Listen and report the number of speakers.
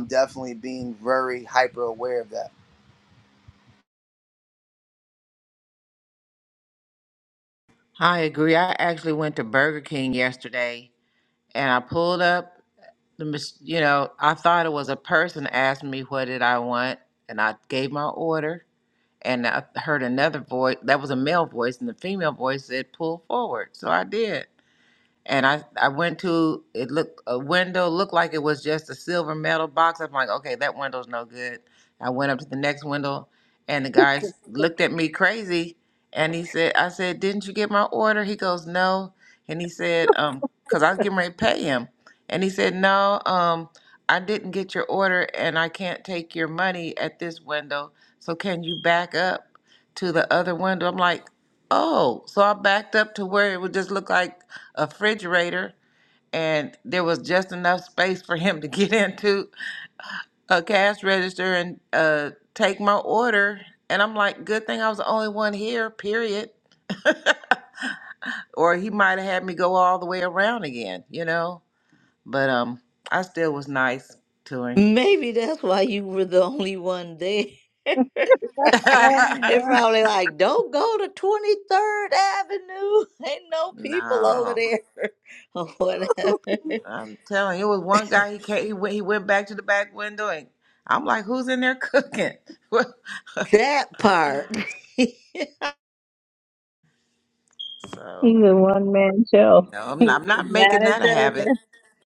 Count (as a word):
four